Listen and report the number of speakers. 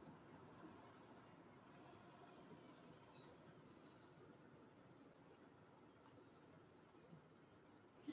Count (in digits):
0